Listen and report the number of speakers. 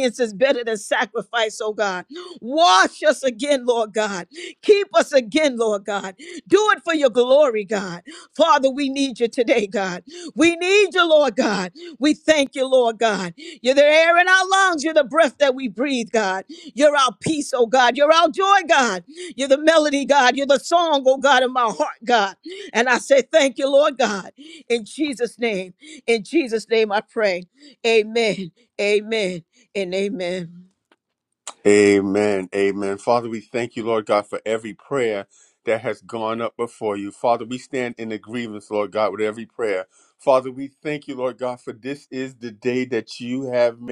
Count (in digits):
2